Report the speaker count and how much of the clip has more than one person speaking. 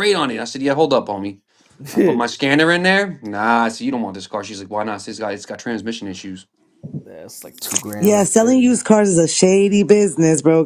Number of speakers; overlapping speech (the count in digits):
3, about 11%